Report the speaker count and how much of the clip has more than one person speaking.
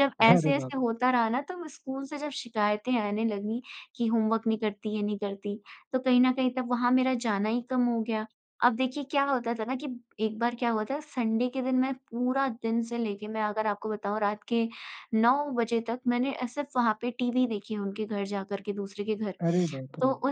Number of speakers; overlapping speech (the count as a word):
two, about 4%